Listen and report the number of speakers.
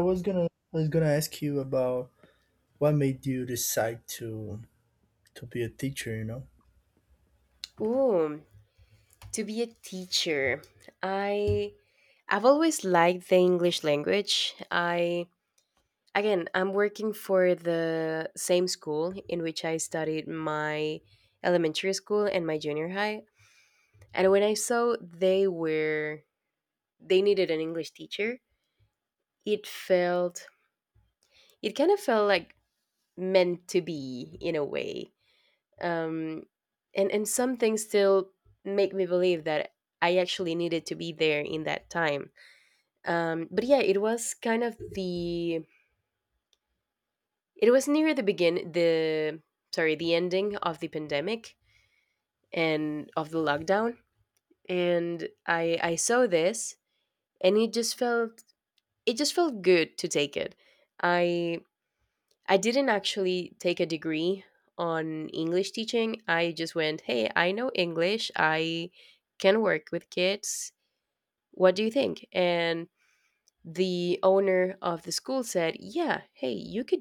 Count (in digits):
2